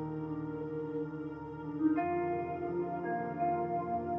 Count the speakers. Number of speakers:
0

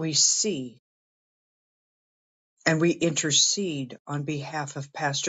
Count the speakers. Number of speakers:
1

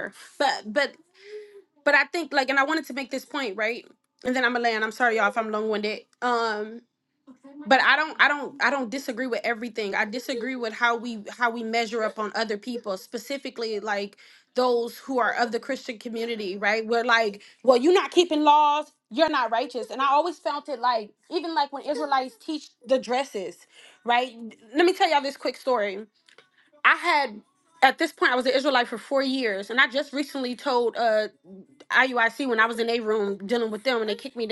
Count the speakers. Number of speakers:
1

